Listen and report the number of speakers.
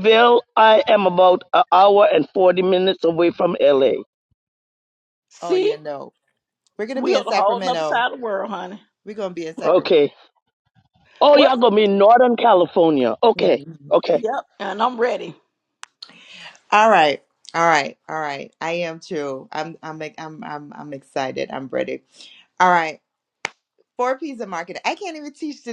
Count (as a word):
three